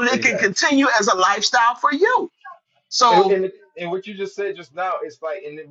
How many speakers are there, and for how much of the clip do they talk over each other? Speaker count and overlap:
2, about 12%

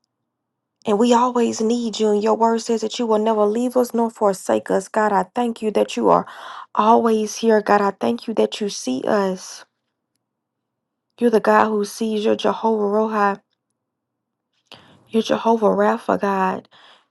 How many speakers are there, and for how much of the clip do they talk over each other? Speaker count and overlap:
1, no overlap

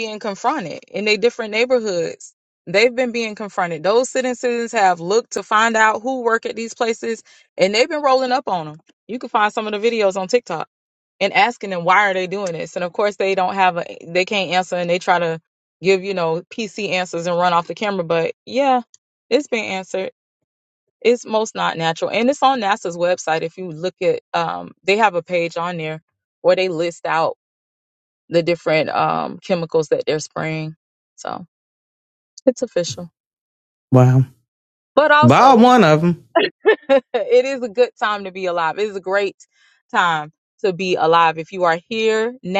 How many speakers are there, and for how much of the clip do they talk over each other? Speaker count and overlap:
2, about 1%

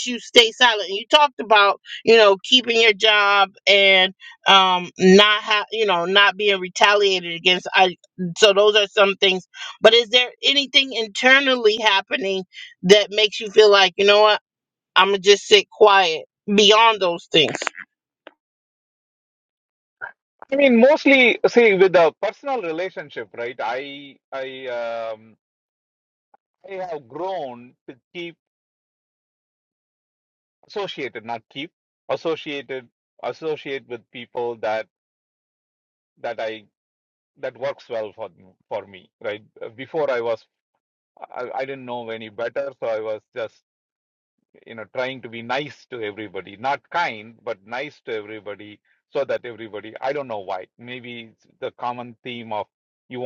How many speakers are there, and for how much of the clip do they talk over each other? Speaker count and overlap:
2, no overlap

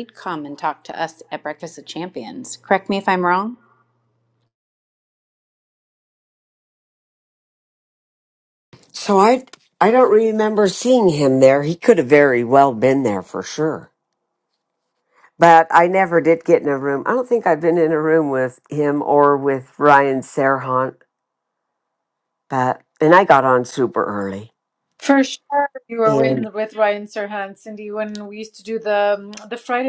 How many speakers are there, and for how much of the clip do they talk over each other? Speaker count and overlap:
3, about 1%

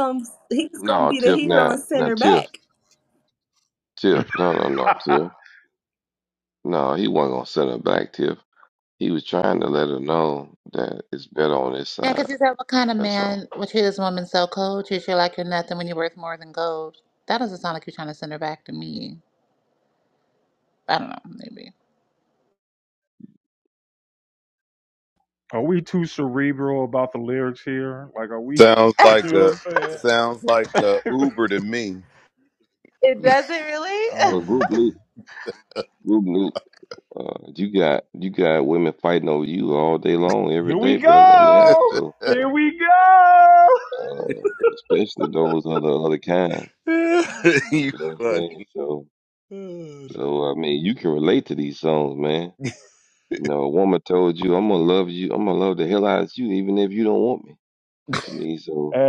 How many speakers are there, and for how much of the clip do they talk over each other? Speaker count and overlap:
5, about 9%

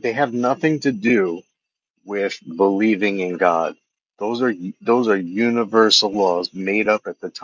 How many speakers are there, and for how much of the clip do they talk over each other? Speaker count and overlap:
1, no overlap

